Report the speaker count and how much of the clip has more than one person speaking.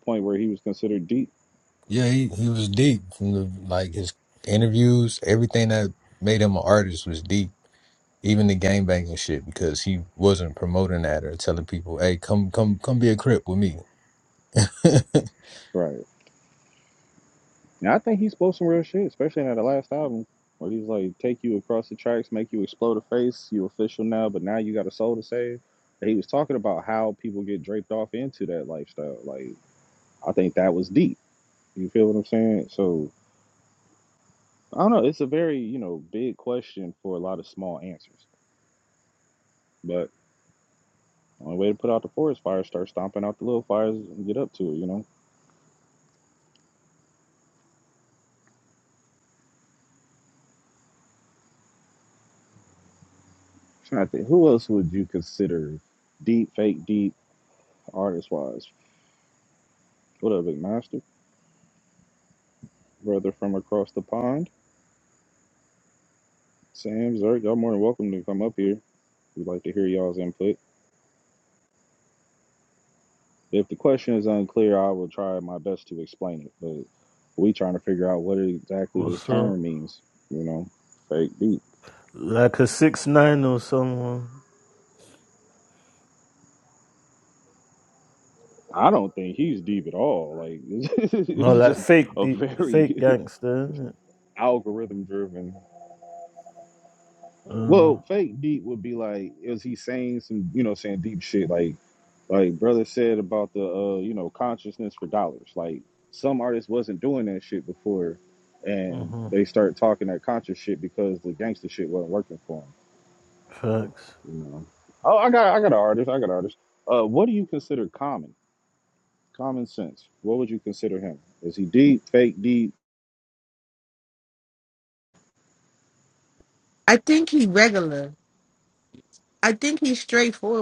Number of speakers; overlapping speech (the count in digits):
4, about 2%